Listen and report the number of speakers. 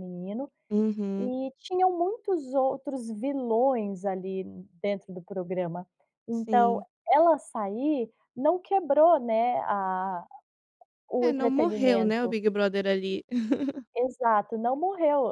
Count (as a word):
two